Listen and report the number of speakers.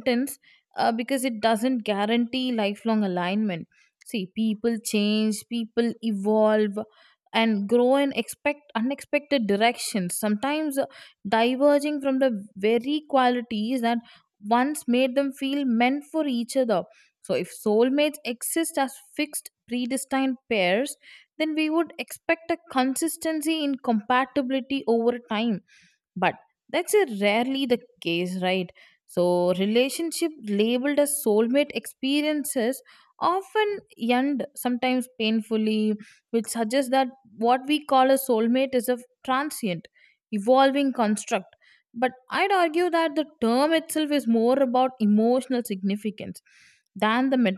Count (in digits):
1